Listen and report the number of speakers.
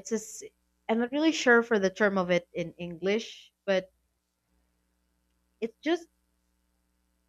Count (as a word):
one